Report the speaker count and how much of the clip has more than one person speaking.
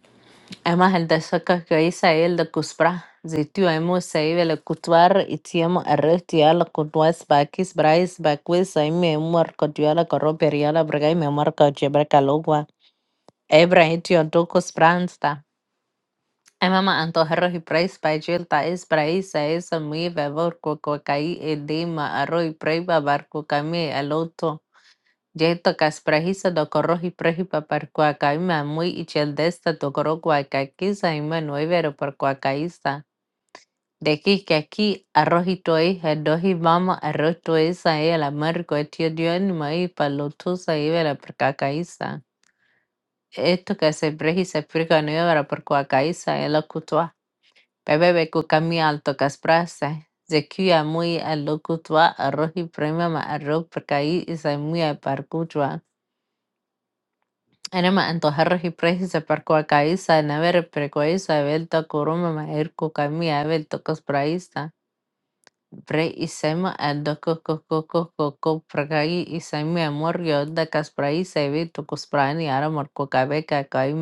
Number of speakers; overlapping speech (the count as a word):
one, no overlap